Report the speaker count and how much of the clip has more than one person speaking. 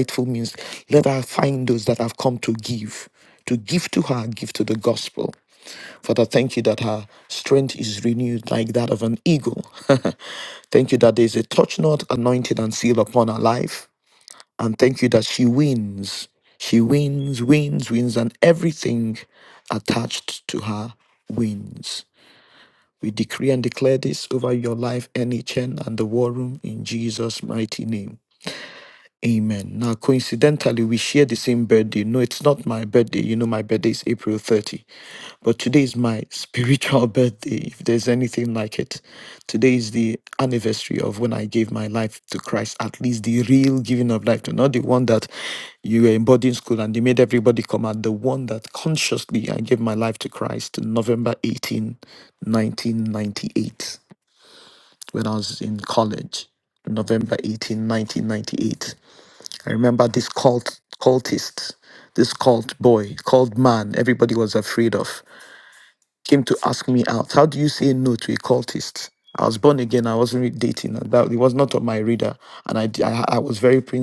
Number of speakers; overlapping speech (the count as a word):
one, no overlap